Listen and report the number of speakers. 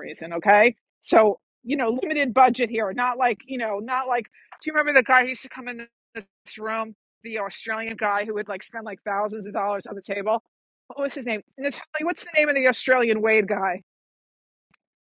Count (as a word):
one